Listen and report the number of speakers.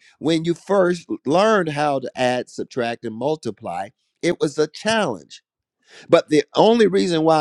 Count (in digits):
1